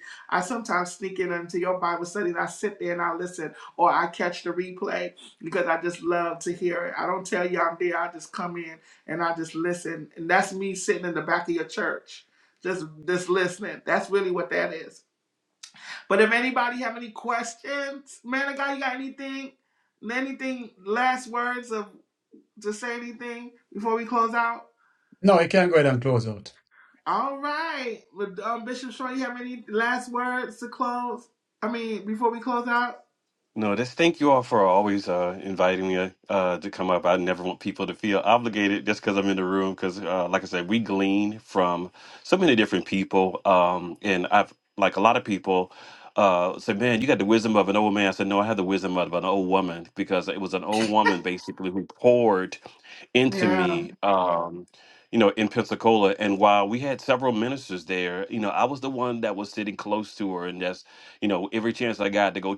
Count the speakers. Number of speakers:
3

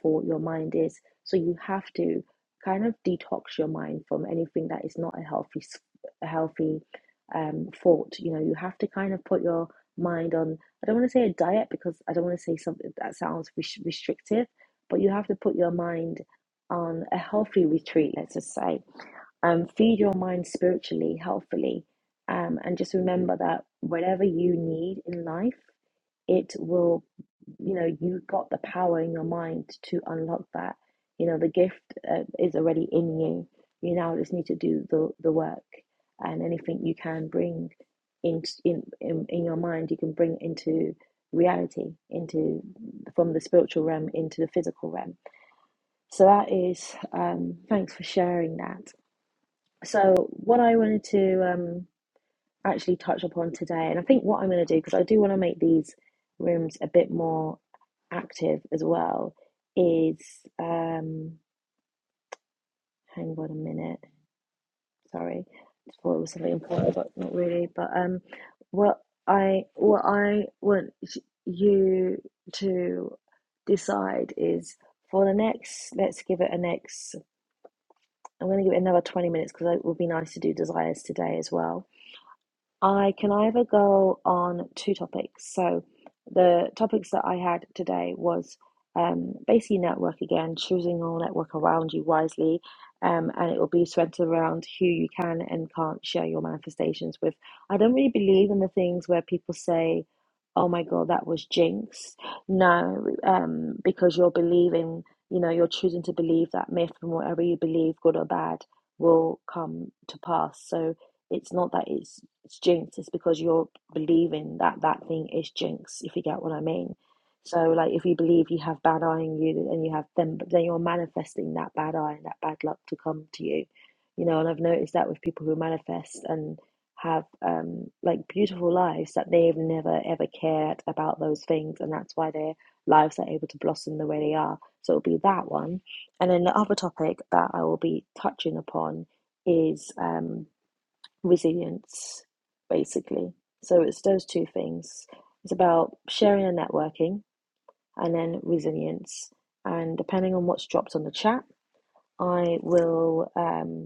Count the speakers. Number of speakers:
1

